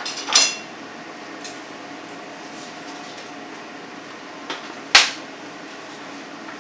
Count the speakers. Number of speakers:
zero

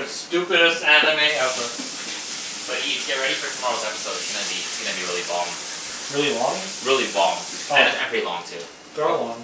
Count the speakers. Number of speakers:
three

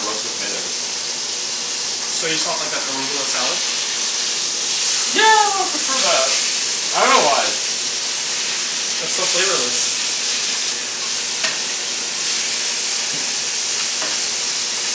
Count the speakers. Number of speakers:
two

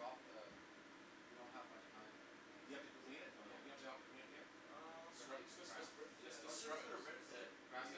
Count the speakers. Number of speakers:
three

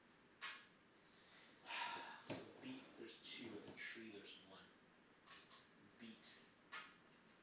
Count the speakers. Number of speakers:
one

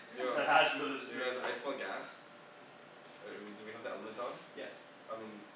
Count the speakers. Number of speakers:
two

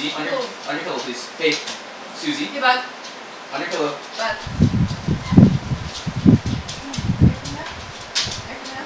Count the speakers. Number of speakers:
two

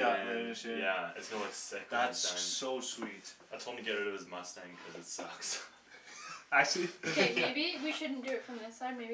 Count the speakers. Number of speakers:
three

